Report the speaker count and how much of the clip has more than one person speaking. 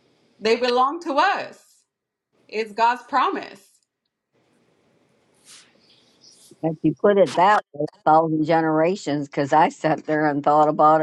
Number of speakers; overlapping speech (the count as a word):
two, no overlap